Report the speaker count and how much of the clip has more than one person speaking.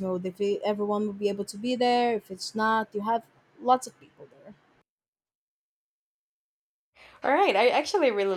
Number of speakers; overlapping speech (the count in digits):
2, no overlap